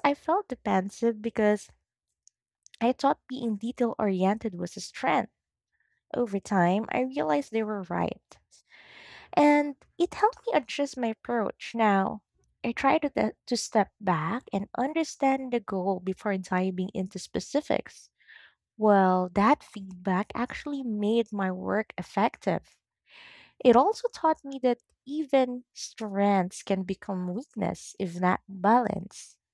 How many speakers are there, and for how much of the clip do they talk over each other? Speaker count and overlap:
one, no overlap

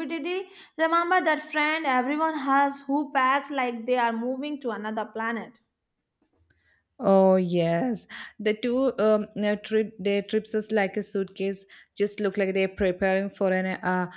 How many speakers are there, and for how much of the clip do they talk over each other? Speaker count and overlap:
two, no overlap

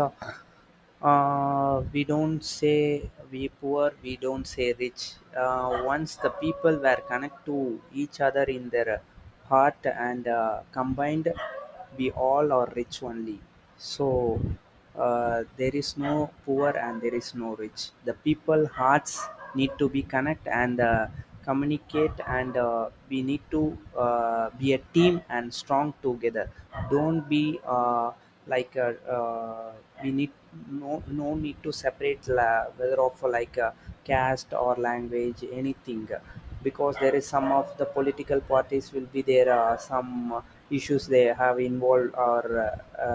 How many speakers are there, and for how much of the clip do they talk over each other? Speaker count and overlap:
one, no overlap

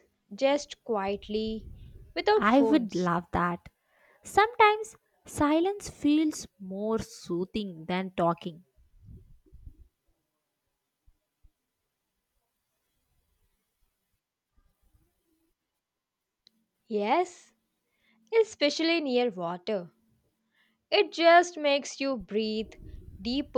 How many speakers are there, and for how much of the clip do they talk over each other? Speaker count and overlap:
two, about 2%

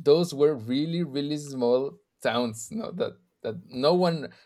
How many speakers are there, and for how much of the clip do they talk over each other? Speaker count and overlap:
one, no overlap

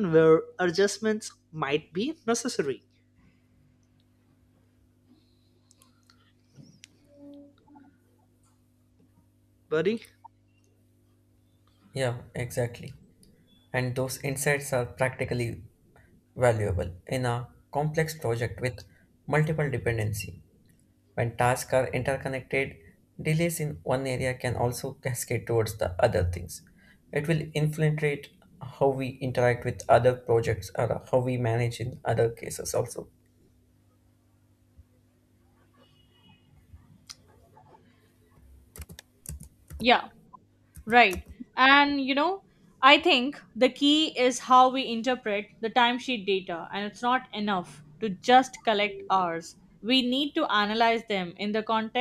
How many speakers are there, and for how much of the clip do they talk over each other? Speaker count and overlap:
three, no overlap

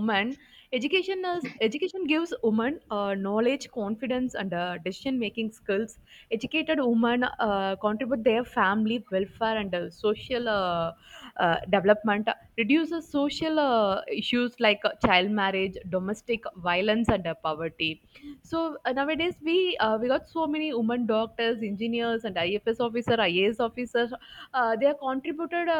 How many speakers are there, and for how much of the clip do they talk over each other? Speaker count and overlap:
one, no overlap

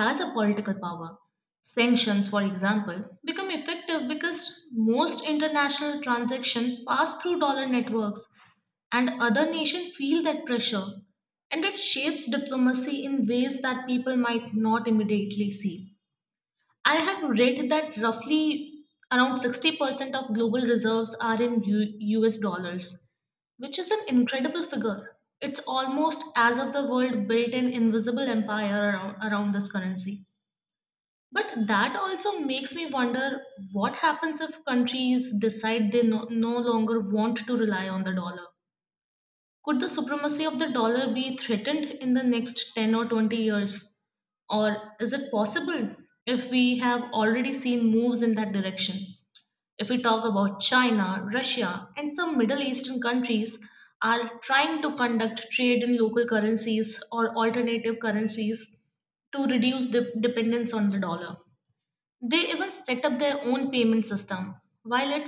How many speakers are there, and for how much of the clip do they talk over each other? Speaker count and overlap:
one, no overlap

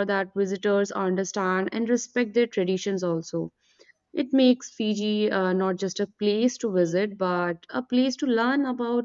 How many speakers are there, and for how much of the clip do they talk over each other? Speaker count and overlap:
one, no overlap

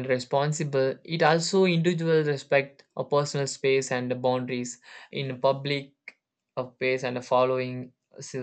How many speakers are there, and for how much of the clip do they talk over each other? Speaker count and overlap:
one, no overlap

